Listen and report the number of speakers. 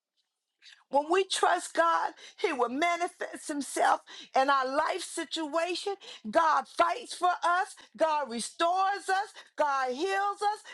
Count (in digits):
1